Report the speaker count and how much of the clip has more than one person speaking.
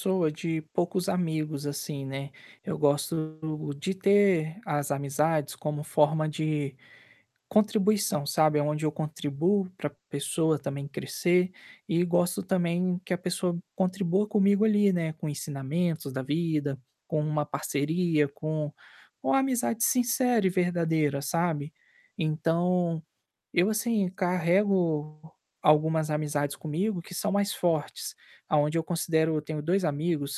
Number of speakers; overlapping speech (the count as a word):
one, no overlap